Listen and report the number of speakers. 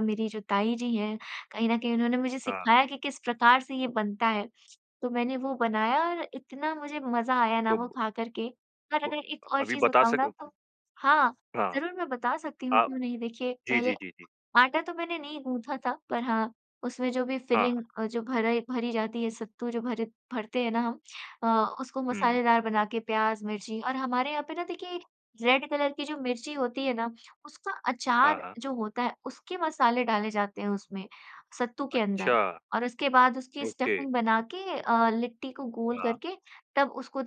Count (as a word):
two